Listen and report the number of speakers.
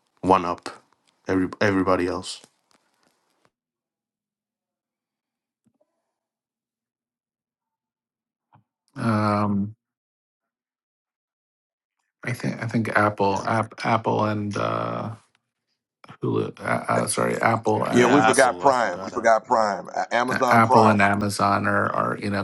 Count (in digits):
3